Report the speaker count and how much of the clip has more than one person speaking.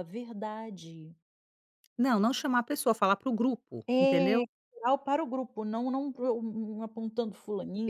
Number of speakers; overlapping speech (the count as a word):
two, about 8%